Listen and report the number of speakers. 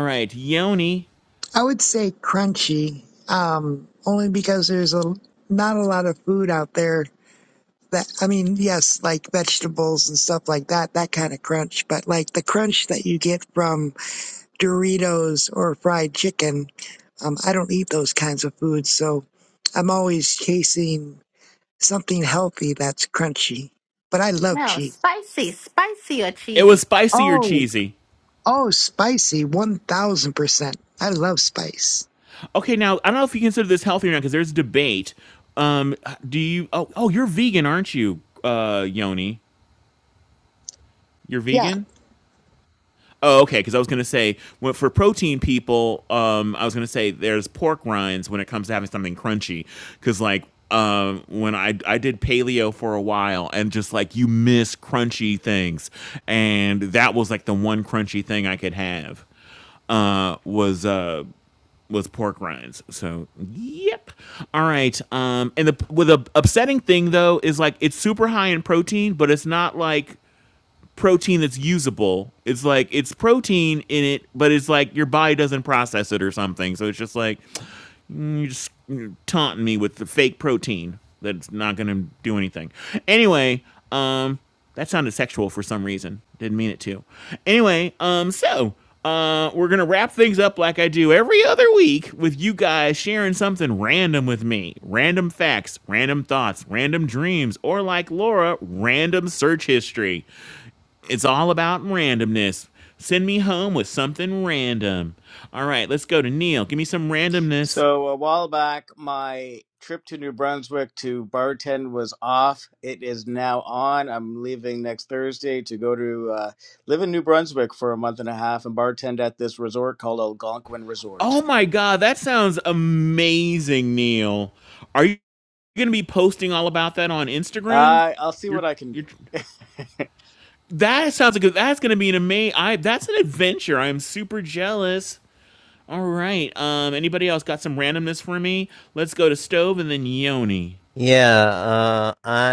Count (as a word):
five